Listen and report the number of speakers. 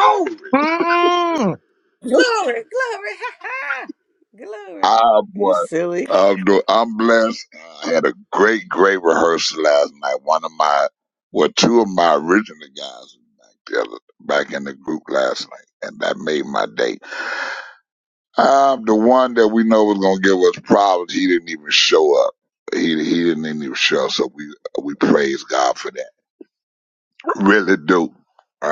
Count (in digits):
3